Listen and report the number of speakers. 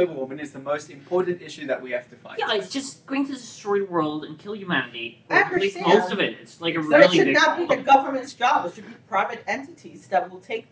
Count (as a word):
three